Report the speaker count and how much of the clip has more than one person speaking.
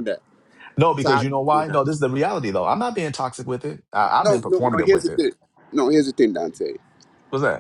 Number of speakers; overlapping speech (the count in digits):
2, about 23%